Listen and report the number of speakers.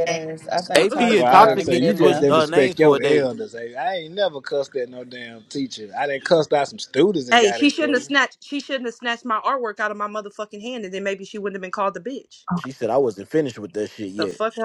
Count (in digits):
4